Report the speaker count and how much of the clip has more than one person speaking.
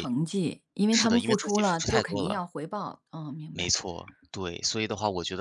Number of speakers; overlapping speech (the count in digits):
2, about 31%